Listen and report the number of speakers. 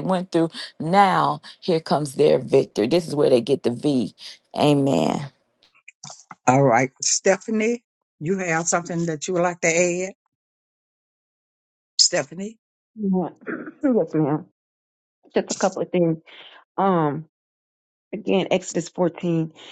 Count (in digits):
3